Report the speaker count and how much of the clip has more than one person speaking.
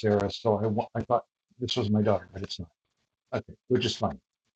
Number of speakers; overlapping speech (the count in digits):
1, no overlap